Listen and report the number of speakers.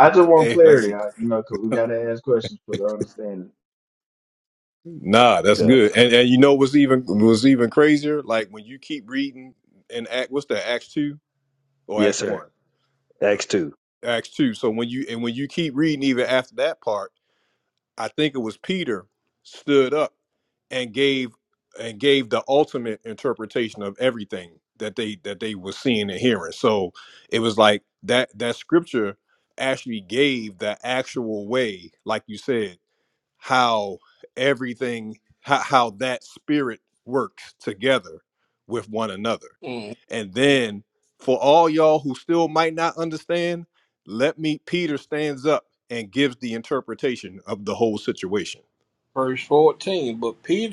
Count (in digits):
4